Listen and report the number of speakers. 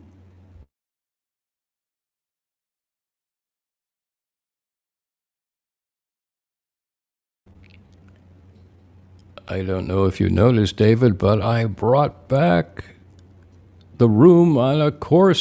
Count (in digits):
1